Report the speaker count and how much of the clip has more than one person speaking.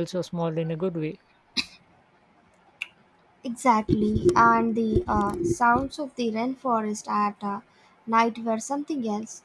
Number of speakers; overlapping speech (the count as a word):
two, no overlap